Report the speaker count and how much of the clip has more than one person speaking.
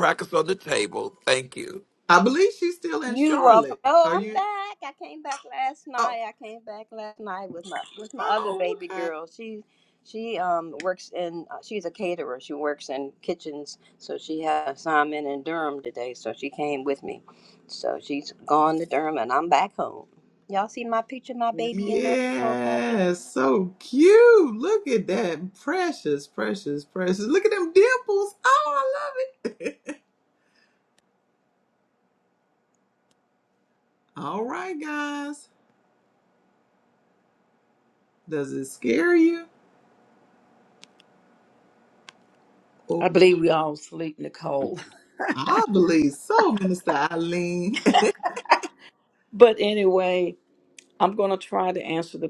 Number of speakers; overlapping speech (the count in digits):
4, about 7%